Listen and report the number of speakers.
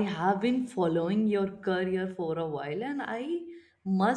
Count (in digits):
1